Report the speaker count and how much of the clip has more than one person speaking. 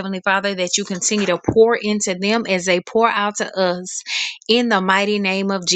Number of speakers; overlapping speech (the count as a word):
one, no overlap